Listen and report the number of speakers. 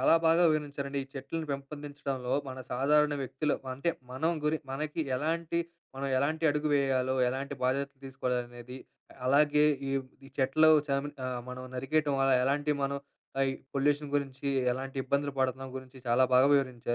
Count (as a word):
one